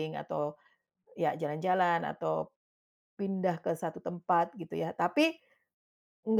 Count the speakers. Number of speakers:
1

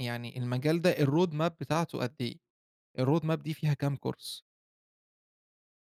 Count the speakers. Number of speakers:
1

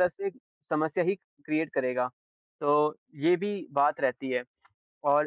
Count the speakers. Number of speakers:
1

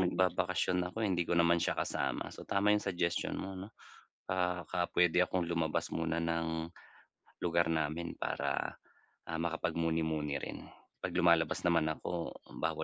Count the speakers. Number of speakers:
1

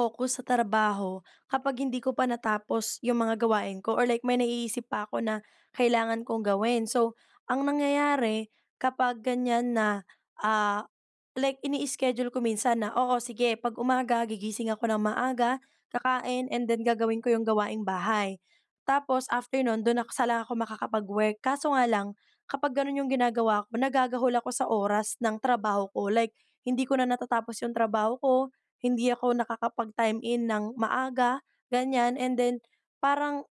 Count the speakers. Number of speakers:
1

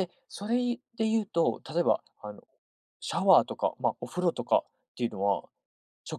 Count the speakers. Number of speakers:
1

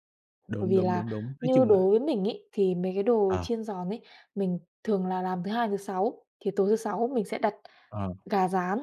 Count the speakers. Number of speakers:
2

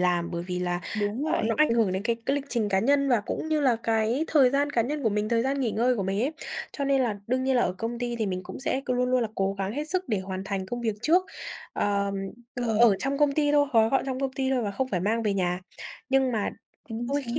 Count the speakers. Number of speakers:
2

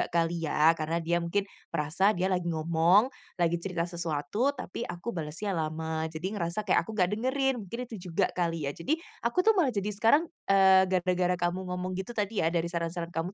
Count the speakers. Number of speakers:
1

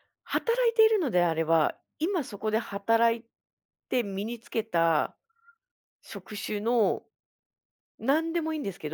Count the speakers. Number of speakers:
1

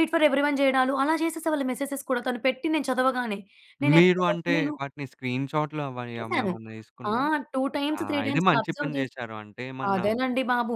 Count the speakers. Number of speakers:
2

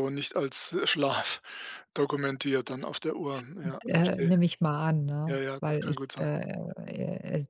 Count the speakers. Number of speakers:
2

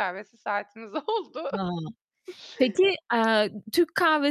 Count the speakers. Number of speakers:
2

